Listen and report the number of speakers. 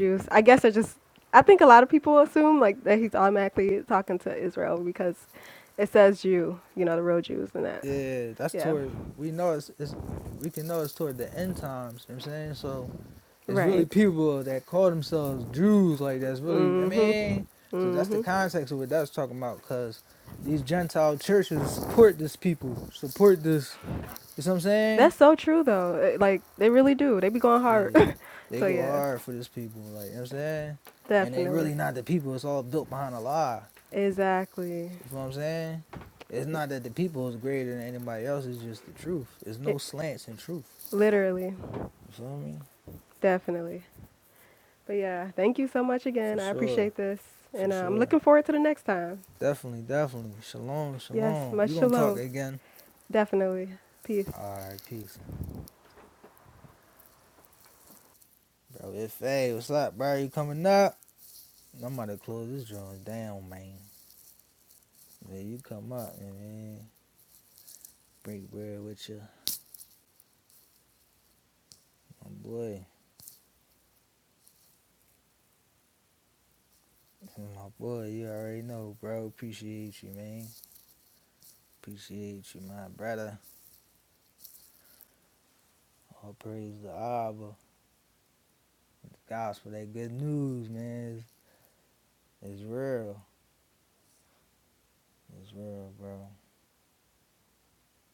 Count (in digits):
2